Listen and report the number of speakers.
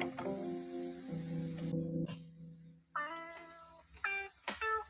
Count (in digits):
0